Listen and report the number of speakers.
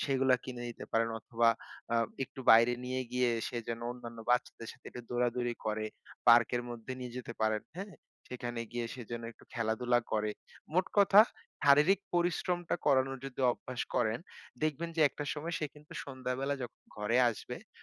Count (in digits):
1